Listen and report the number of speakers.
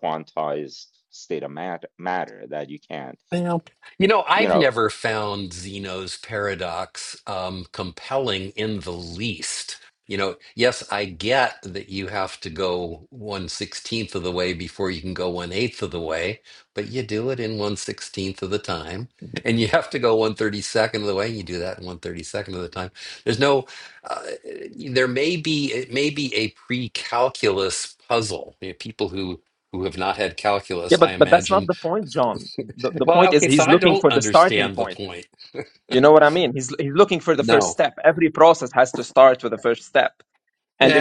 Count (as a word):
three